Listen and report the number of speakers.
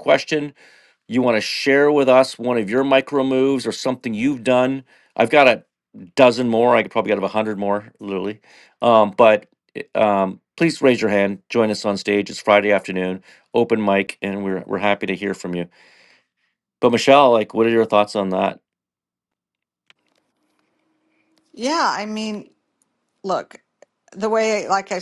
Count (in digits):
2